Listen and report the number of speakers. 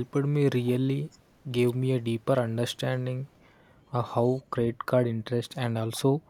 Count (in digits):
1